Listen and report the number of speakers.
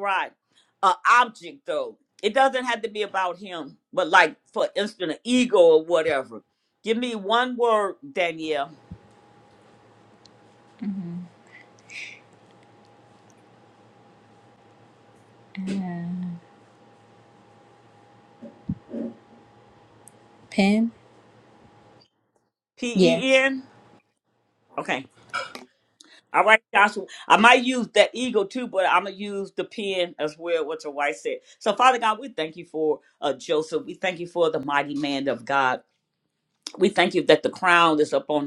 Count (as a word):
two